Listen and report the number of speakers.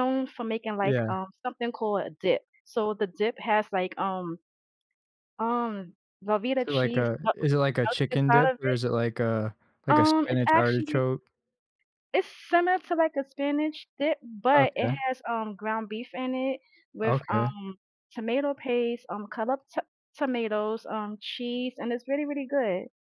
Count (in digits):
2